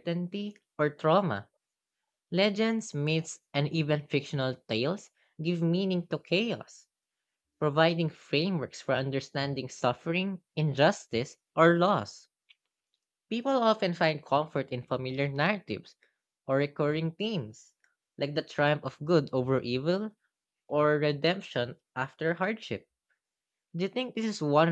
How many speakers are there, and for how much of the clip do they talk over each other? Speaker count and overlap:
1, no overlap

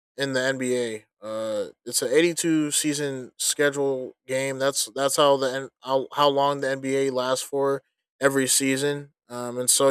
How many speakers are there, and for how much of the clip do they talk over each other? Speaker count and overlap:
1, no overlap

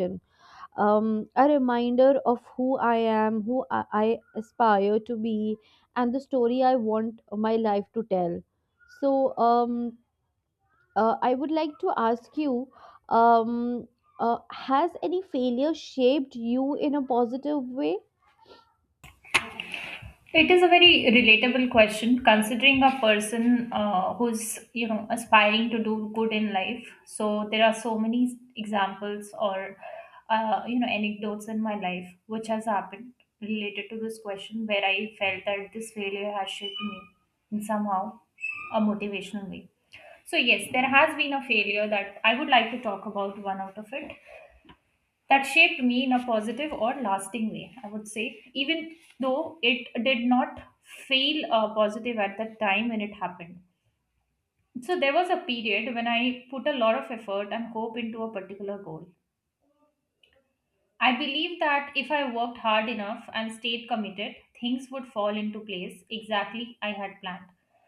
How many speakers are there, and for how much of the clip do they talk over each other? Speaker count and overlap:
2, no overlap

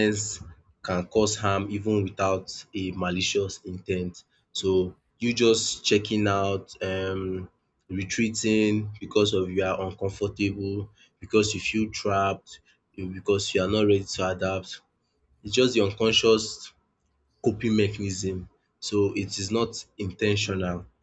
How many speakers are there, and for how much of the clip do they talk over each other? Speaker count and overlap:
1, no overlap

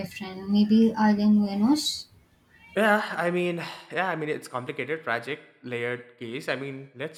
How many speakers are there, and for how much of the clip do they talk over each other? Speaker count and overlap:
2, no overlap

